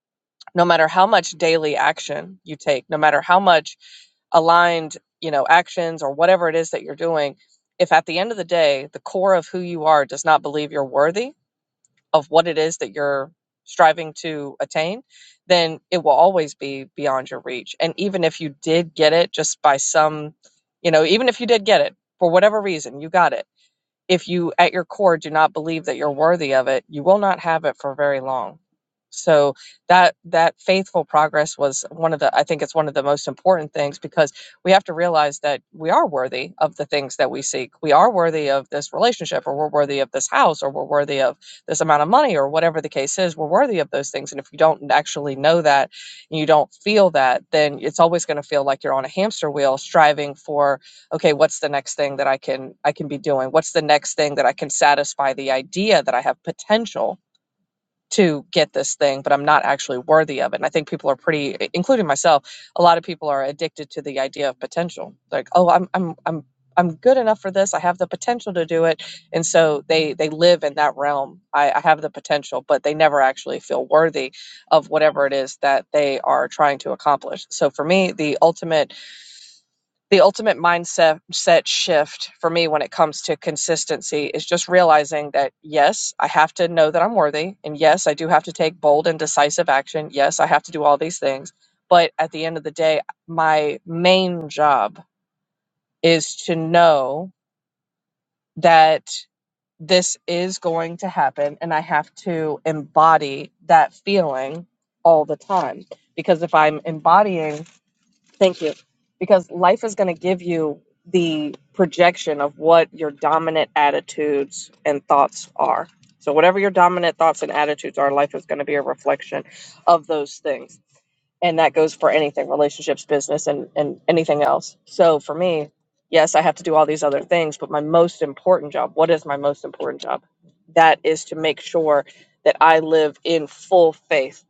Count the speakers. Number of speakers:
1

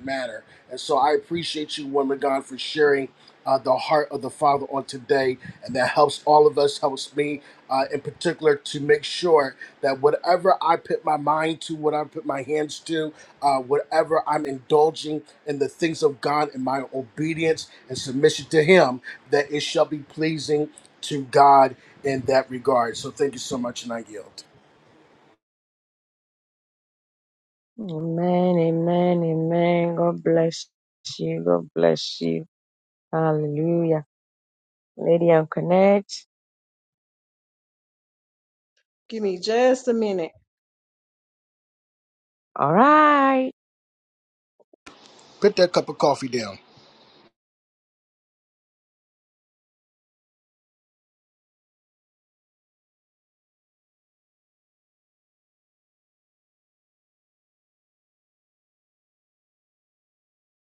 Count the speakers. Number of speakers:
3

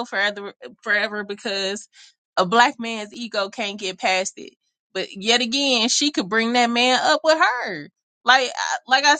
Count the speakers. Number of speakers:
1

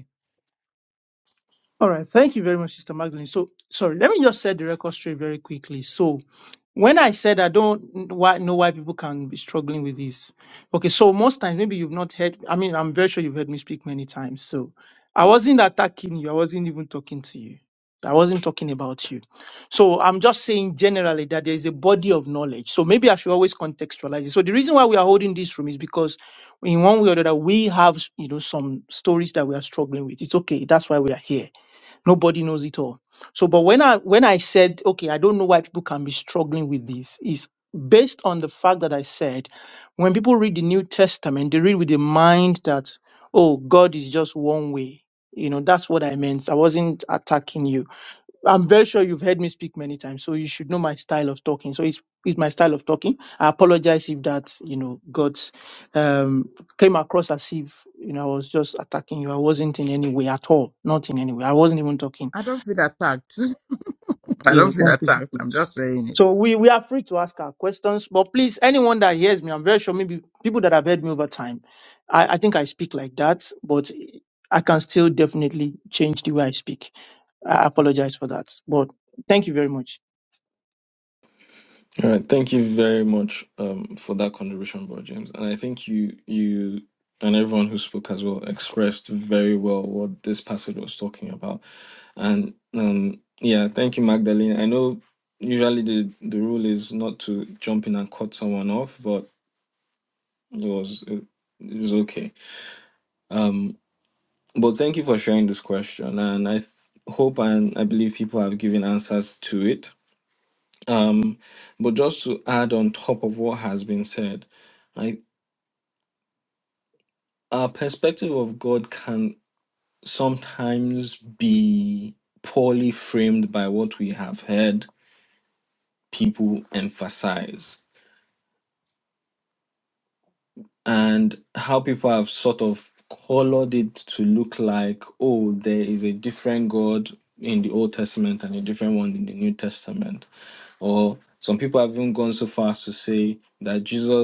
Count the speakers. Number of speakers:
3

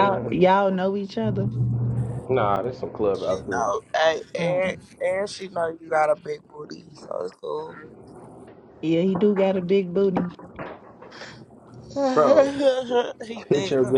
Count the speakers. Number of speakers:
3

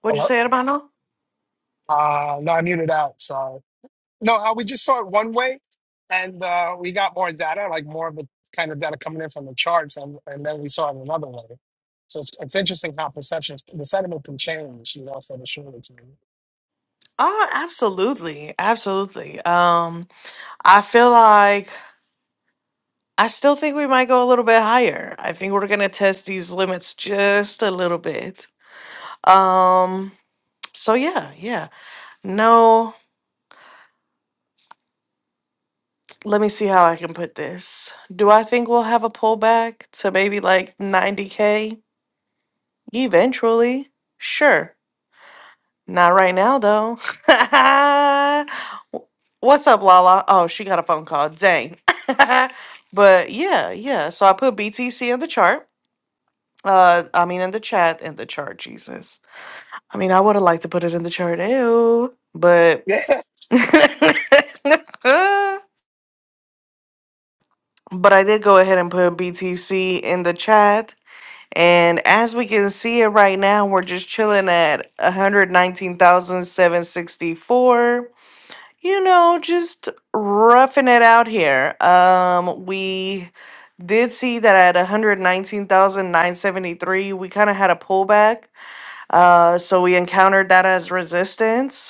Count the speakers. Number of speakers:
2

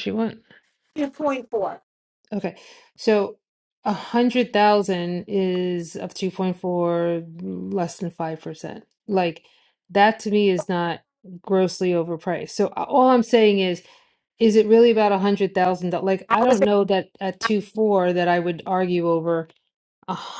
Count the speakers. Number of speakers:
2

